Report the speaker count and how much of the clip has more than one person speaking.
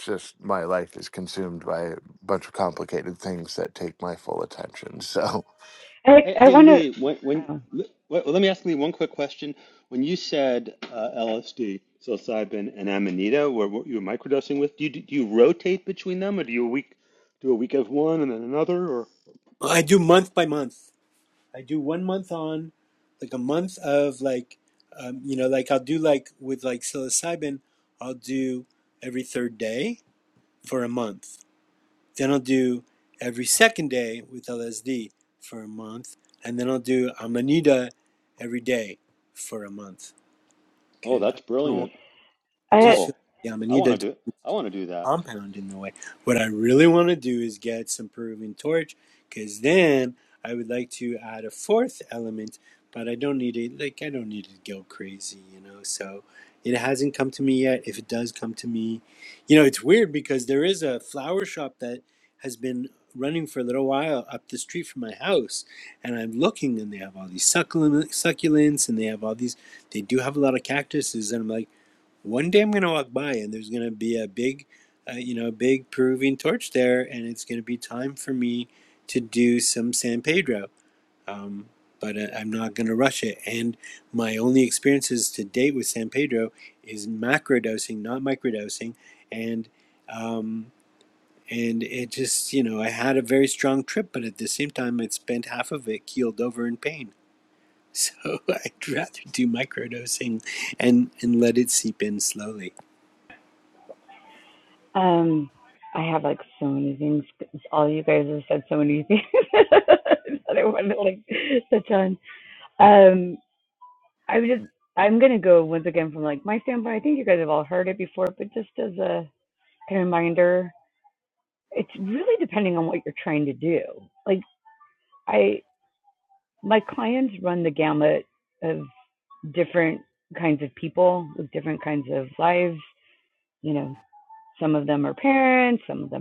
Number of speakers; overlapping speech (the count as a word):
four, about 2%